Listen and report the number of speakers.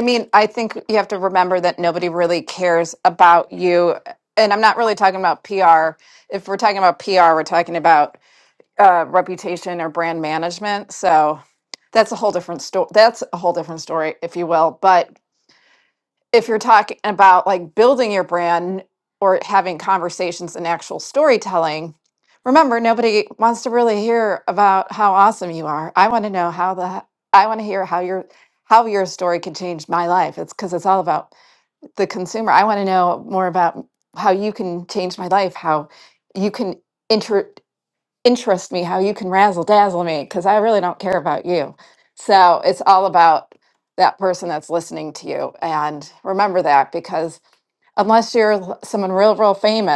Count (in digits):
1